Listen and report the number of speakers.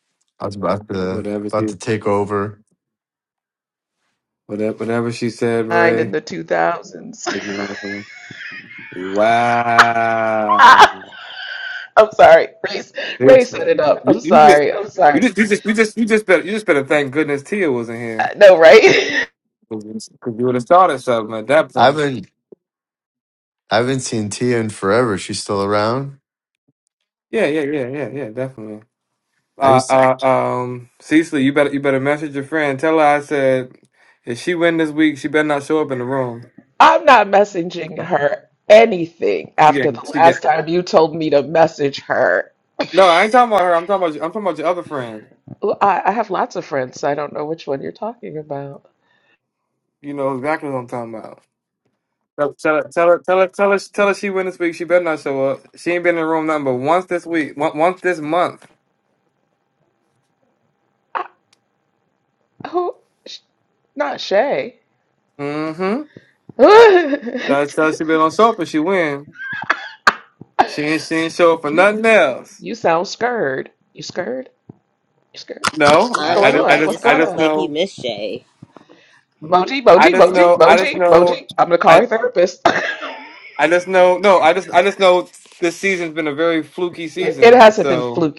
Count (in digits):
4